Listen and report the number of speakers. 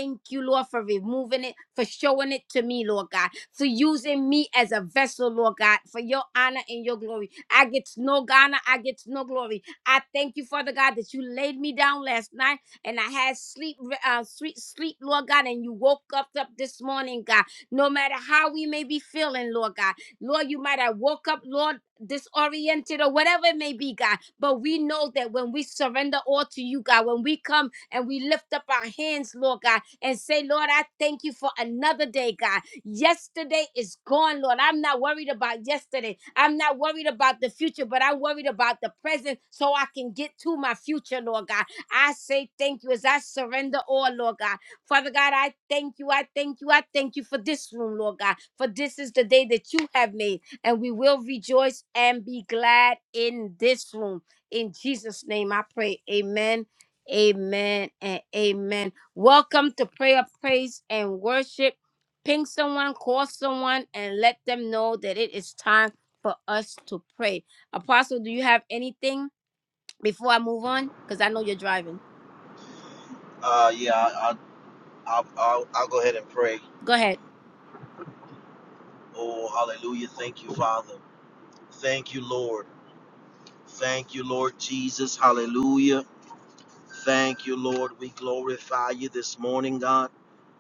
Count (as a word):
two